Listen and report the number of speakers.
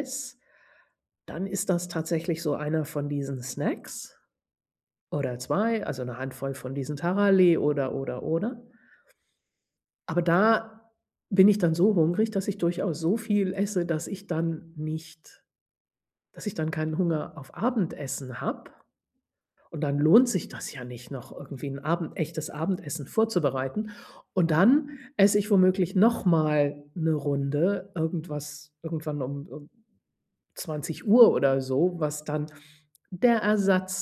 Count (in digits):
1